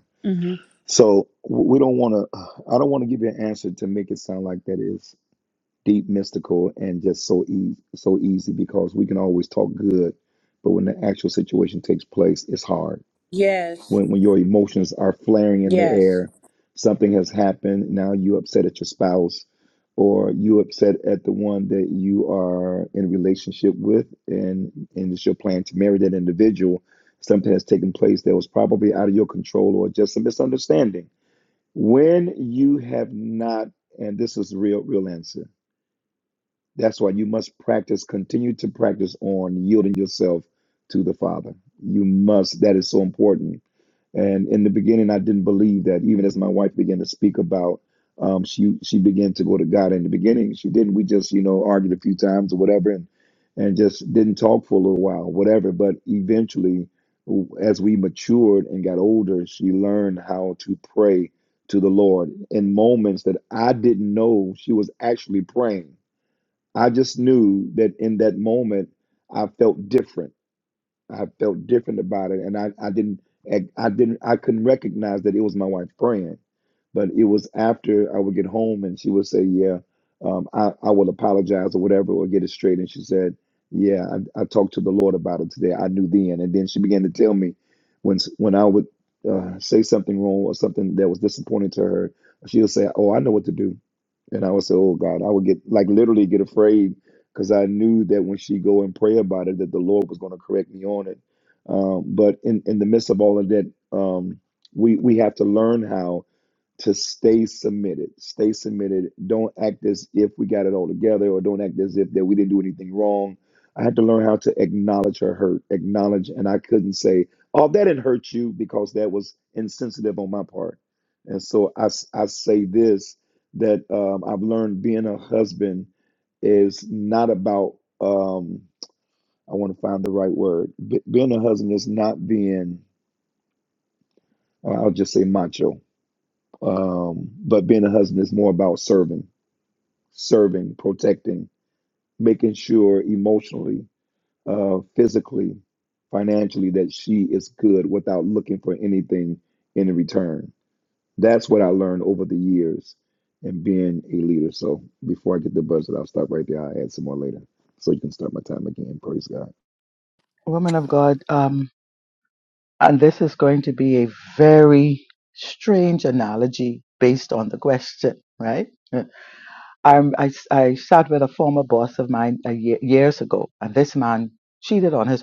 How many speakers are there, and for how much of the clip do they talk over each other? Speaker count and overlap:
three, under 1%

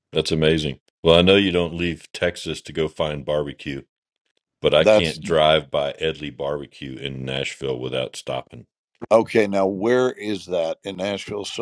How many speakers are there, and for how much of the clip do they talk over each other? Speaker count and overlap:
two, about 3%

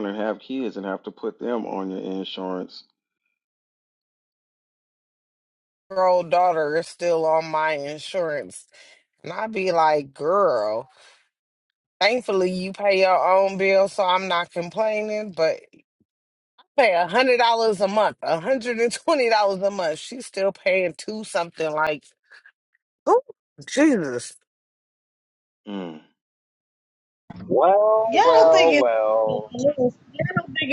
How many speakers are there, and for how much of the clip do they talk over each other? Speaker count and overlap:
four, about 3%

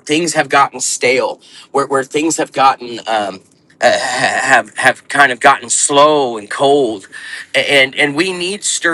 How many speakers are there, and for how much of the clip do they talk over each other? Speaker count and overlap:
one, no overlap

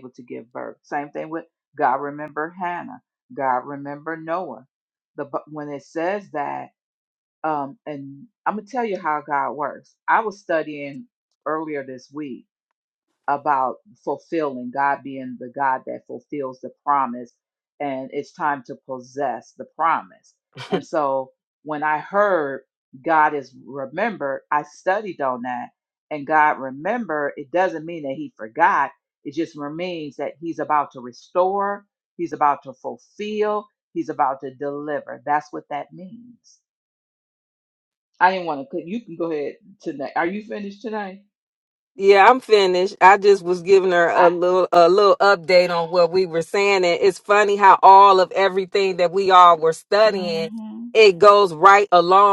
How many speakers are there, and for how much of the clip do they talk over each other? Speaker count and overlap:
two, about 1%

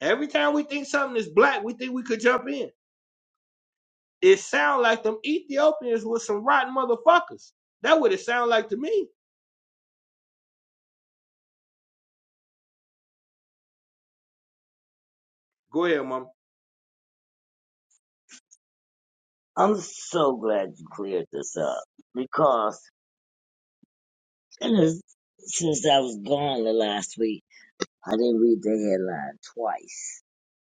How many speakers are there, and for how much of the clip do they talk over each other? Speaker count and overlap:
two, no overlap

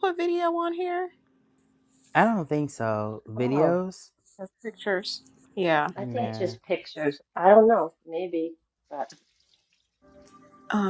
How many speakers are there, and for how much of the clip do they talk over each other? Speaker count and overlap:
three, about 8%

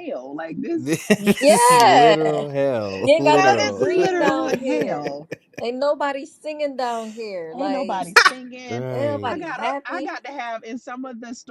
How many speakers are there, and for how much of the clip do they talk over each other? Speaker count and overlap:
three, about 43%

